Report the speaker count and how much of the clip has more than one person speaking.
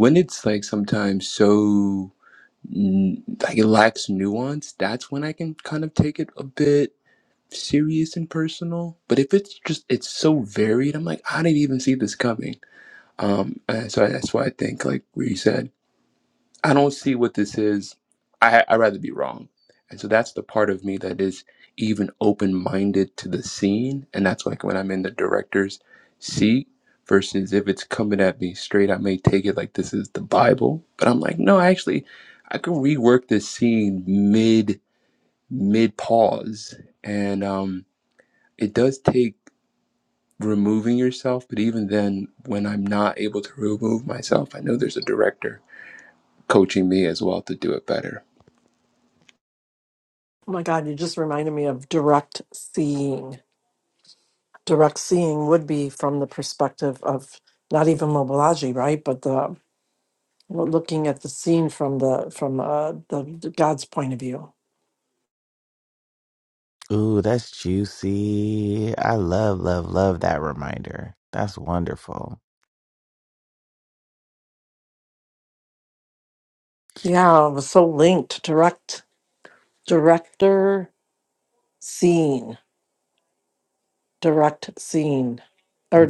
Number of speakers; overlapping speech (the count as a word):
three, no overlap